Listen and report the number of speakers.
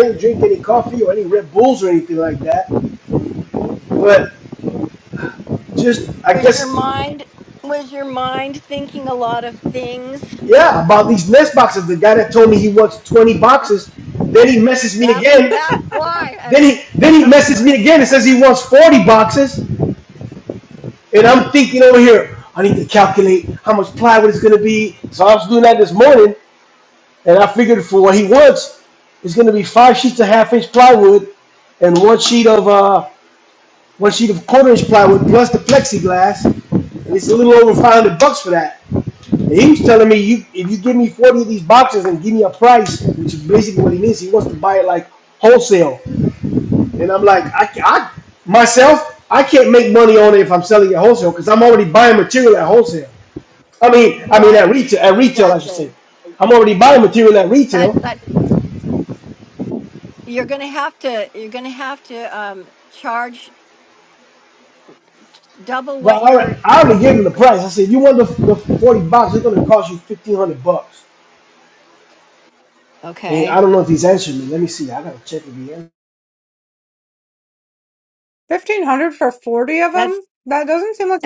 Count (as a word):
three